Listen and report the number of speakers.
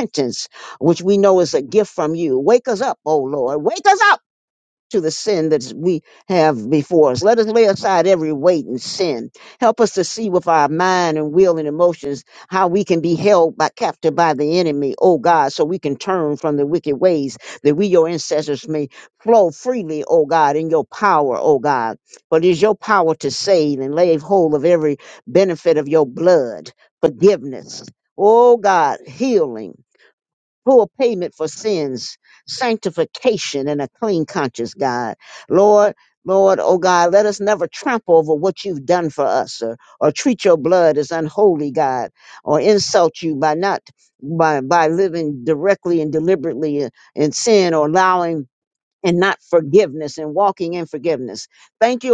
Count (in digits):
1